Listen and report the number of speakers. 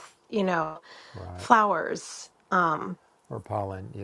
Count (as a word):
two